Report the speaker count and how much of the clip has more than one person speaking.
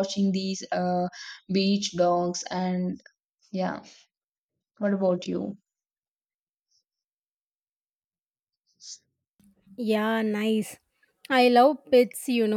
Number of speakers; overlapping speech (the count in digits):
2, no overlap